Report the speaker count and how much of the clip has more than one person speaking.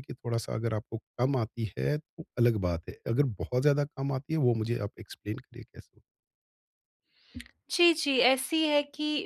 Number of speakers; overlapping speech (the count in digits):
2, no overlap